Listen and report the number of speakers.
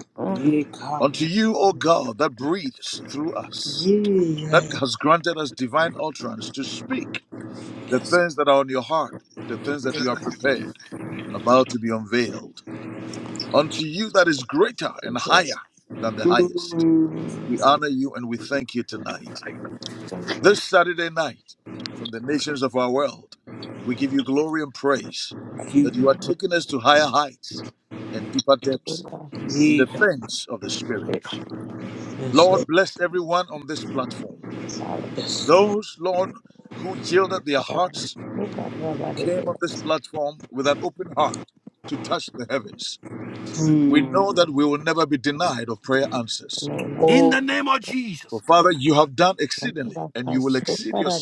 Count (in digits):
4